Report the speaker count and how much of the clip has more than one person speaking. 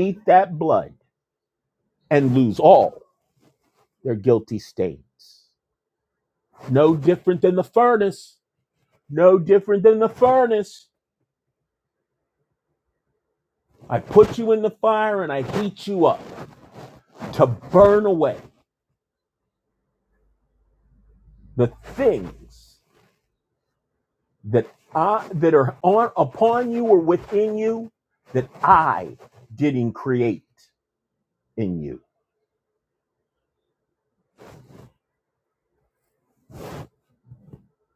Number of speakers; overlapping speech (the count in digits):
1, no overlap